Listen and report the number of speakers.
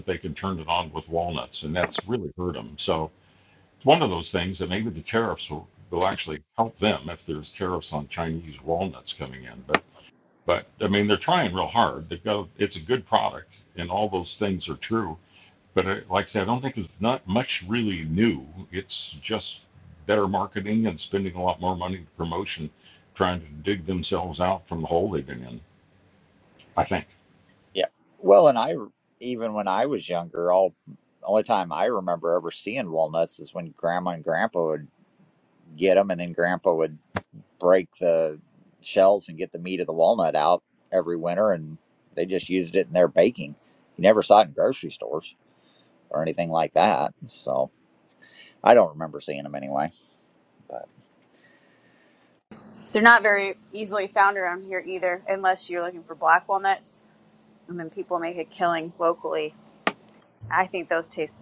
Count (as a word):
three